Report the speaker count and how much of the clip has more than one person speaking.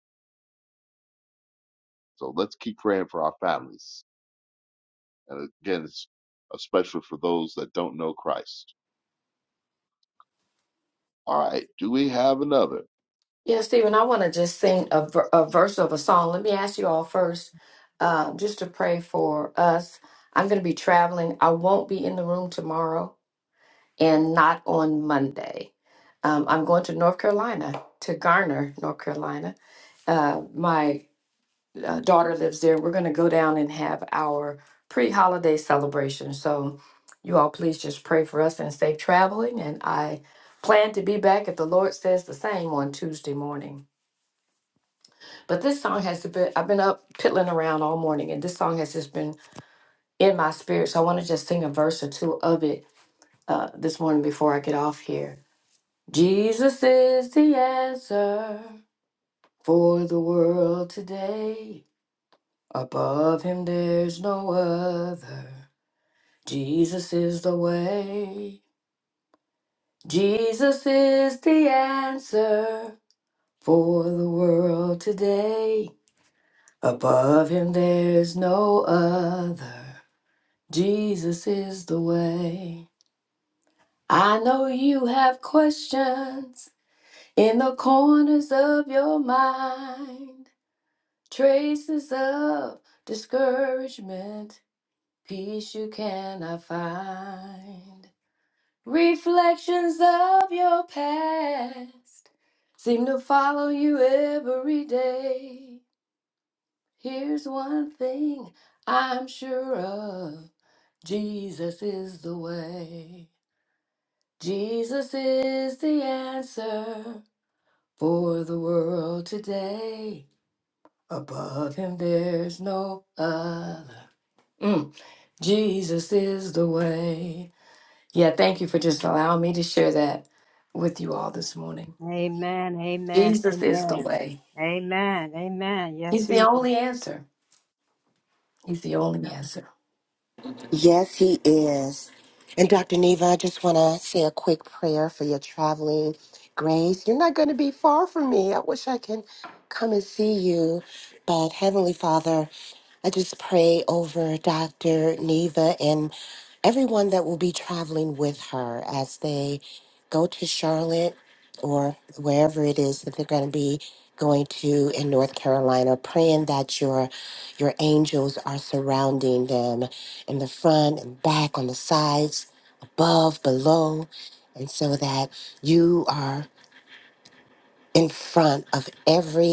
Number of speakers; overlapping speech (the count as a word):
four, about 1%